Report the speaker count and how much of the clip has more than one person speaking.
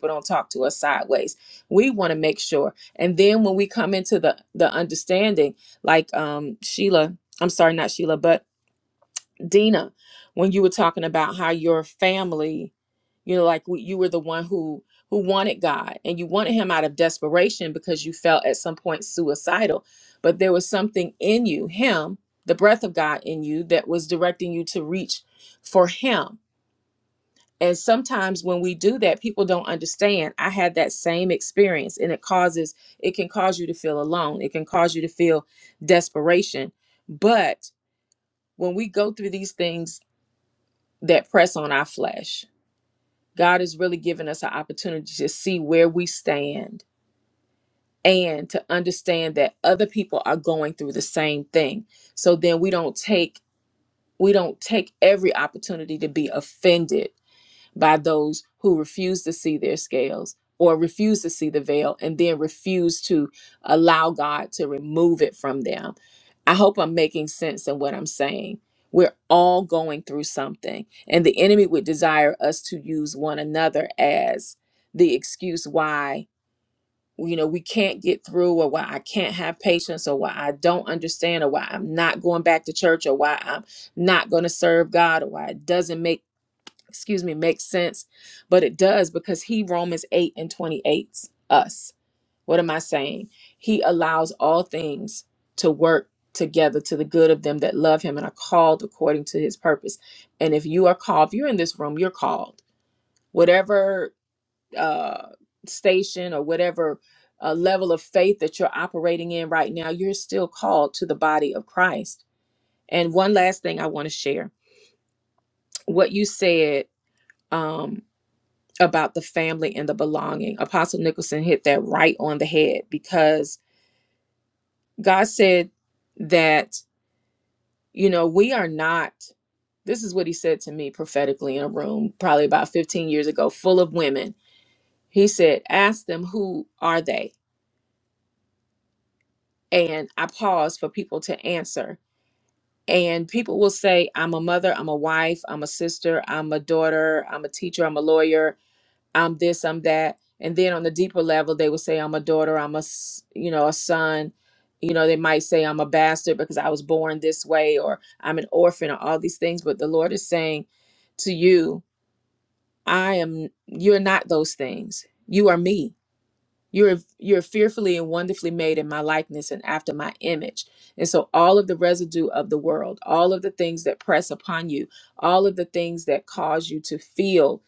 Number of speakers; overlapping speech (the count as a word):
one, no overlap